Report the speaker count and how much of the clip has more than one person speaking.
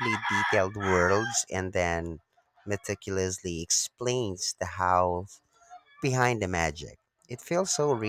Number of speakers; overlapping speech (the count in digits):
1, no overlap